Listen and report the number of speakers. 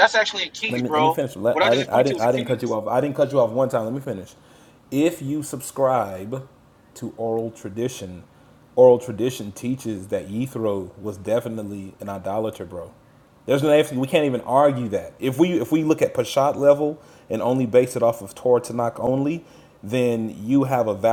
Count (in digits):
2